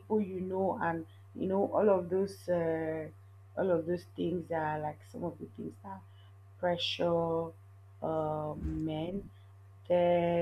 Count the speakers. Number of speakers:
one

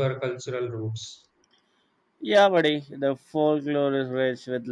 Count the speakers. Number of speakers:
two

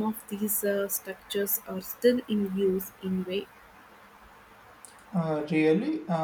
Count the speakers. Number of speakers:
two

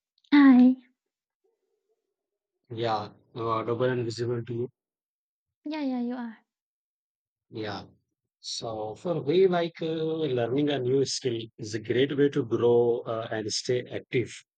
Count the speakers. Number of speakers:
two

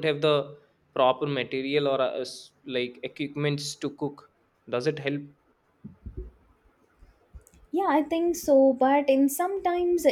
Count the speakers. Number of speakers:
two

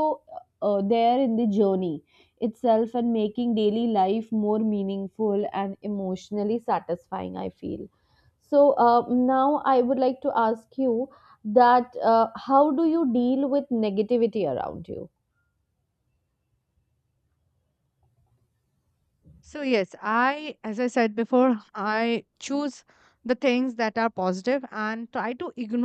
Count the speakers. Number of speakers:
two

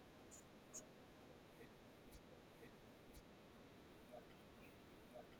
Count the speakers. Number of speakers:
zero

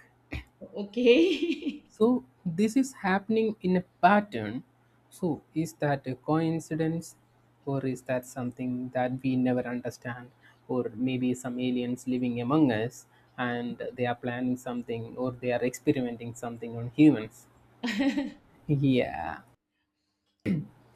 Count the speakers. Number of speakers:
two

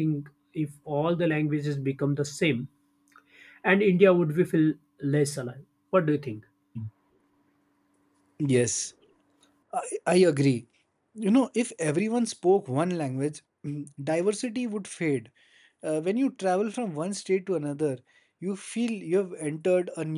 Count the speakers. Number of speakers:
two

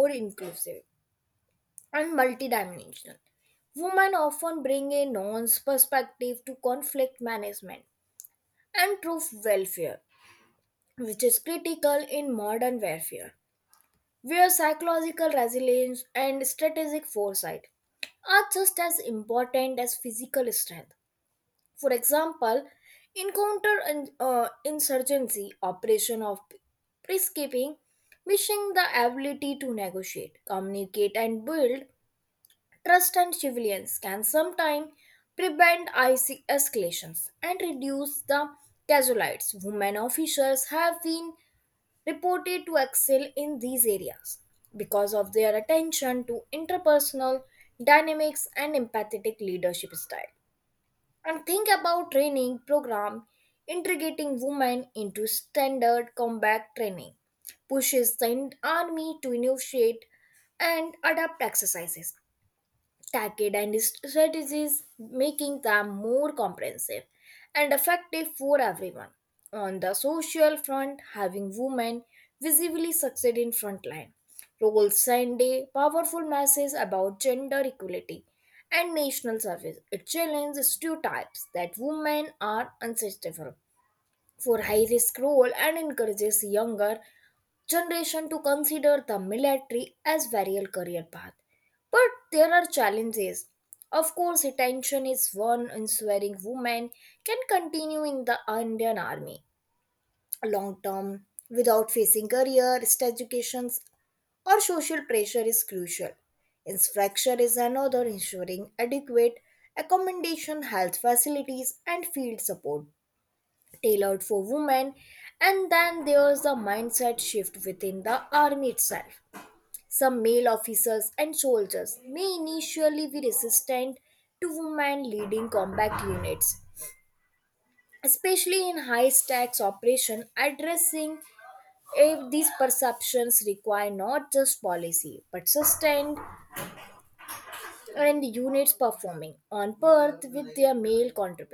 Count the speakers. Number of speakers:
one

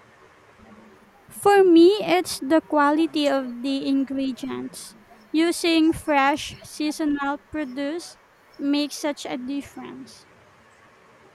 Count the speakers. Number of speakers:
one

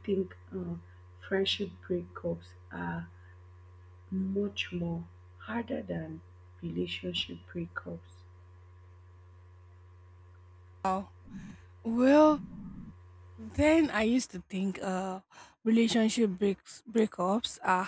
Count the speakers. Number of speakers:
two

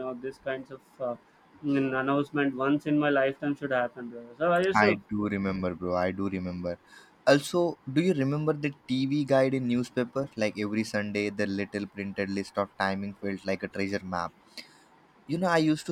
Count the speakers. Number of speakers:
two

